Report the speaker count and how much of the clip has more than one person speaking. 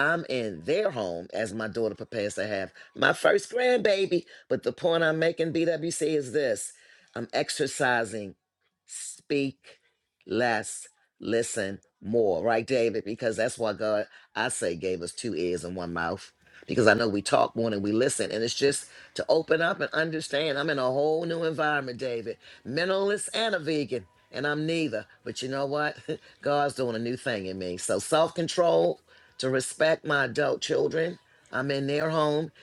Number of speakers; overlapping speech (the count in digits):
1, no overlap